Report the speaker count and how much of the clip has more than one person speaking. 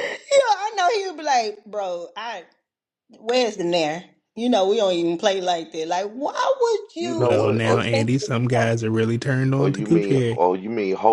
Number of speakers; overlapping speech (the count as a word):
three, about 22%